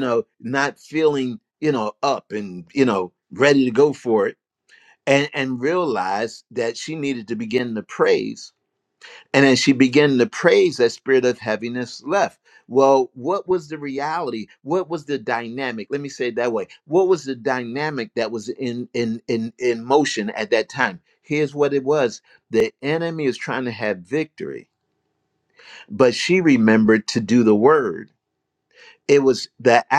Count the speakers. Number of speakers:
1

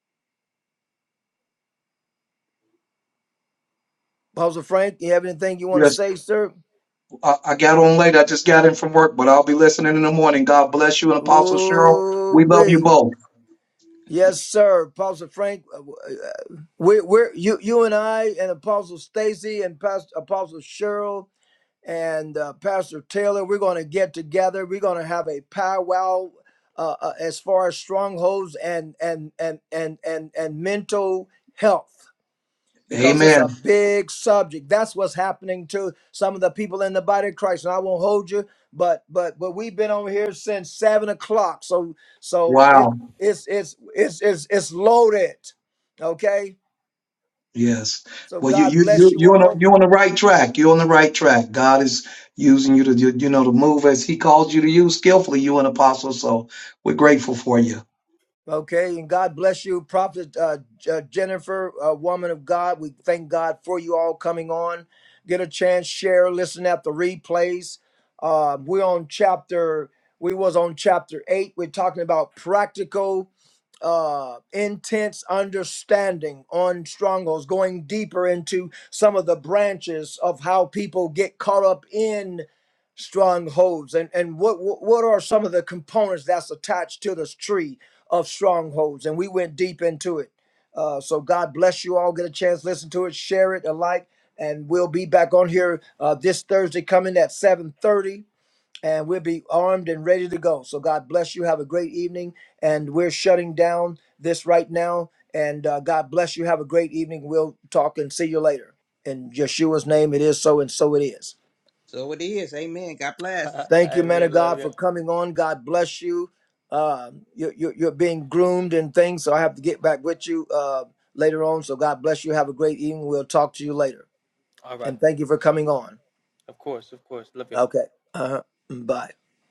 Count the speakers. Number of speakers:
4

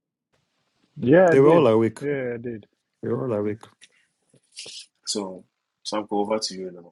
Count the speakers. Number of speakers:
3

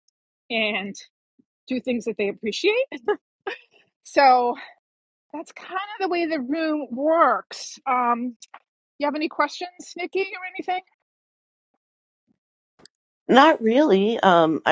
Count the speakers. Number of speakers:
2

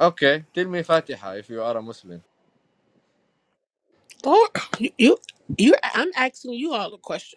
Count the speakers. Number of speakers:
2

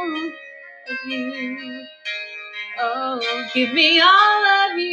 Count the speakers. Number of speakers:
1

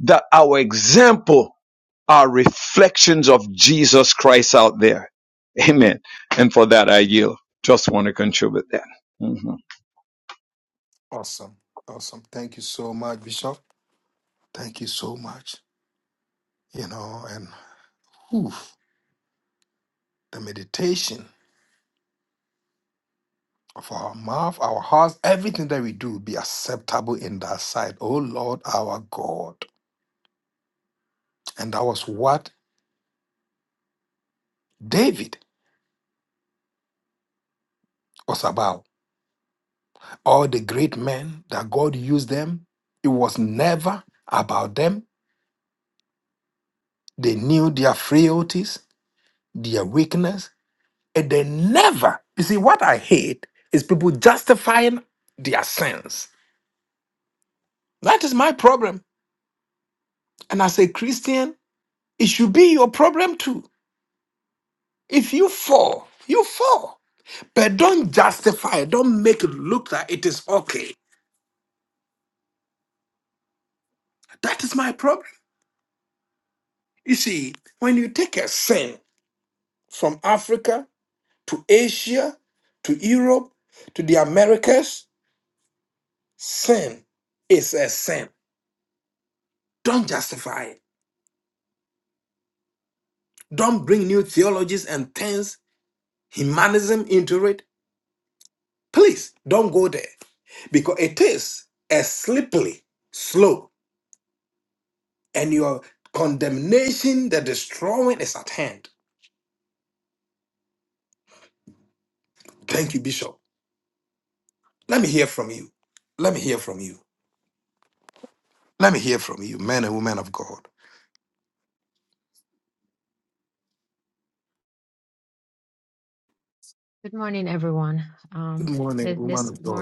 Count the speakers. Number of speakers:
3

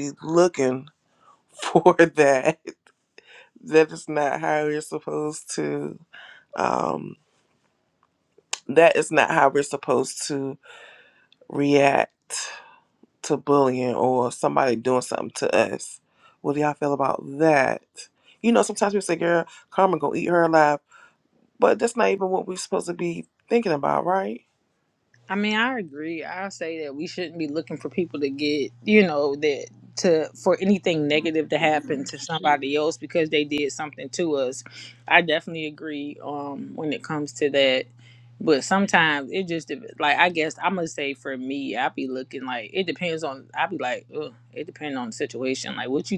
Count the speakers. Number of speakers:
2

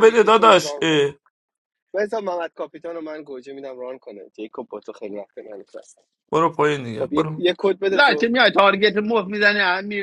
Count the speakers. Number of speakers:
3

